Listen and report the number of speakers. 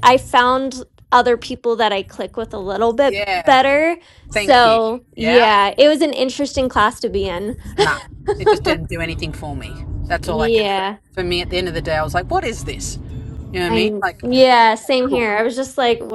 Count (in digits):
2